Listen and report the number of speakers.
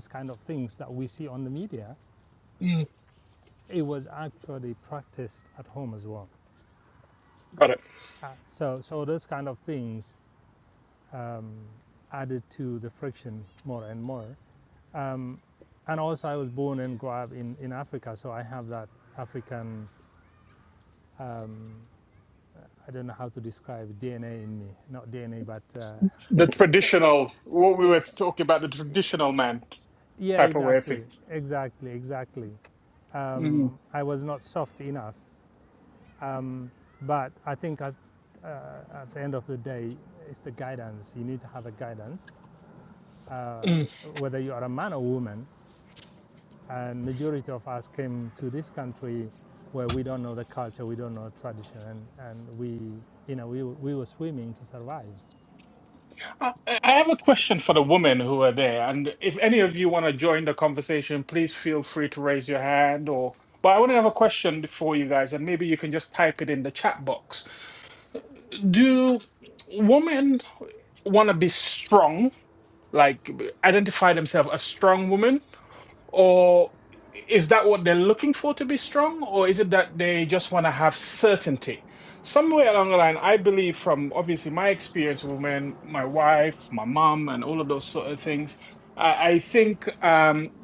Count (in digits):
2